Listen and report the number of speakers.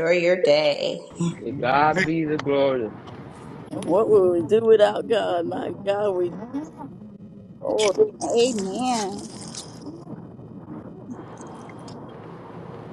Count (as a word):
four